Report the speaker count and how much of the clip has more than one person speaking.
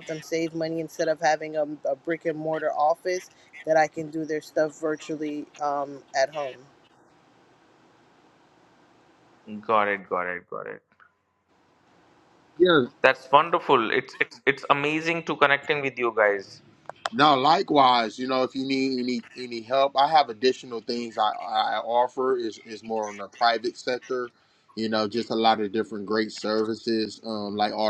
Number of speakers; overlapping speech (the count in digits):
3, no overlap